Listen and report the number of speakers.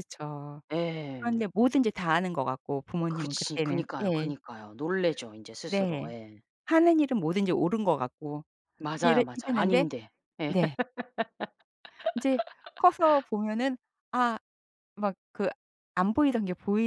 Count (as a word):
two